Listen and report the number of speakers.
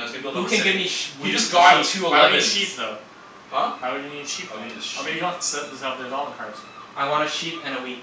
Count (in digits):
3